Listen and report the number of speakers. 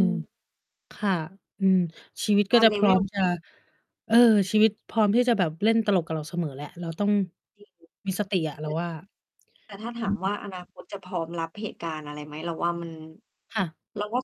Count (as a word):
two